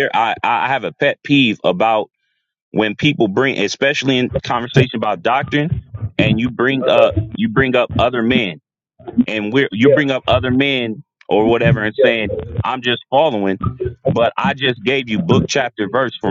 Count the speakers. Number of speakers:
1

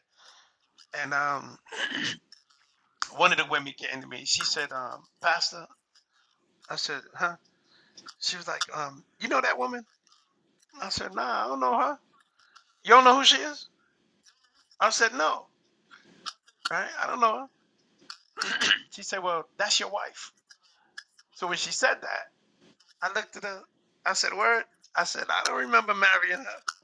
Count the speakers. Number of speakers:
1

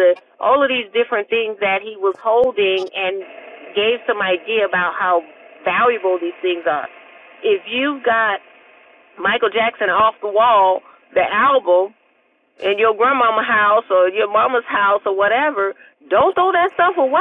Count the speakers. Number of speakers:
1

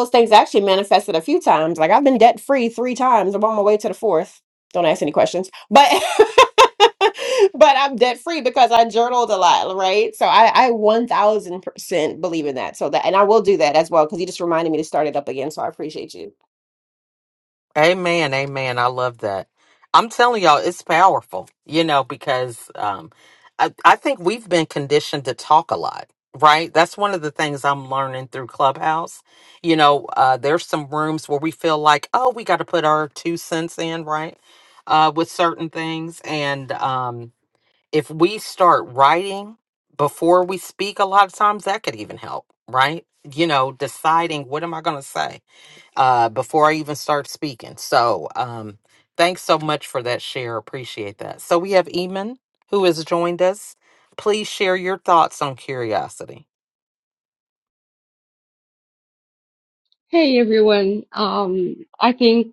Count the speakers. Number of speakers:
3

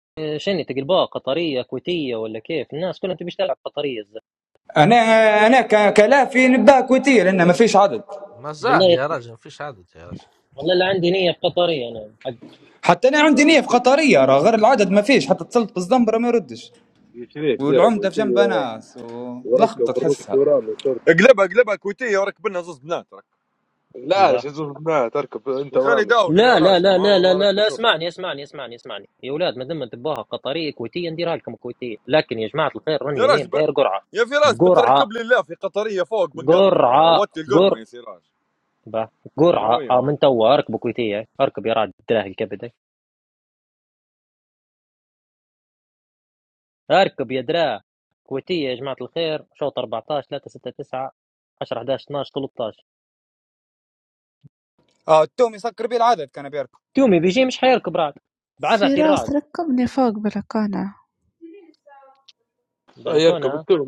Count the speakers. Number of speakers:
6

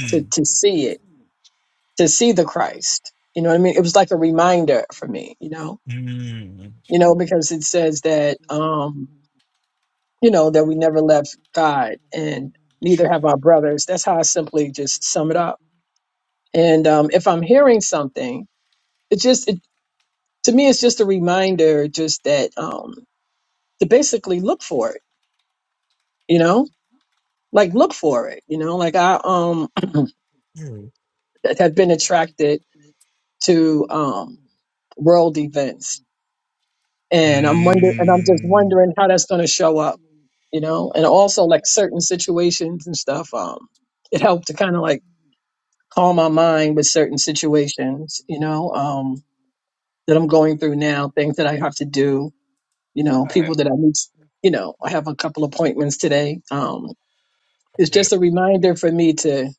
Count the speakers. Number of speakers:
2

